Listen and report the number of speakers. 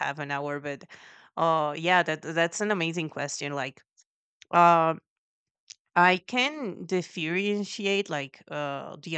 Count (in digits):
1